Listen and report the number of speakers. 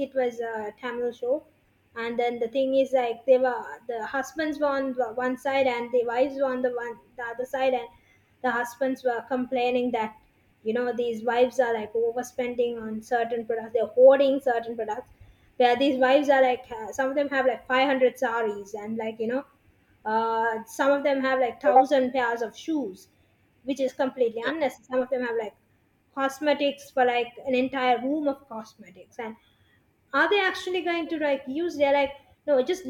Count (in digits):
1